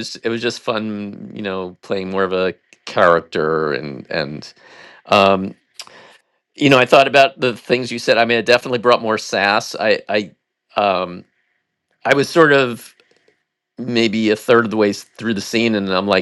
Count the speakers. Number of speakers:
one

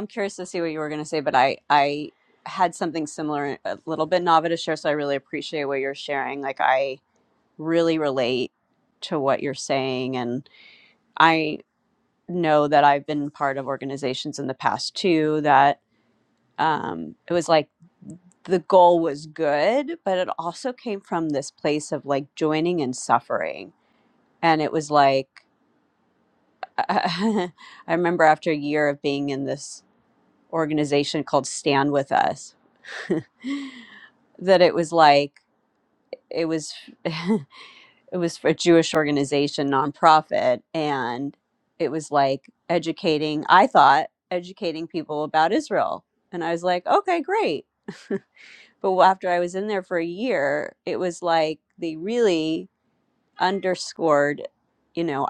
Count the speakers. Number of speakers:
one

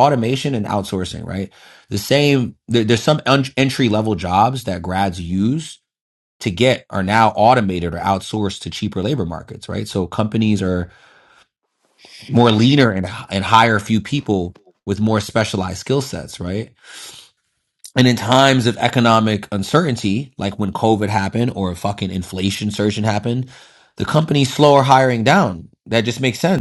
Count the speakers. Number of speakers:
one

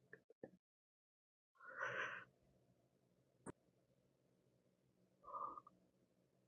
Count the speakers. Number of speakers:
zero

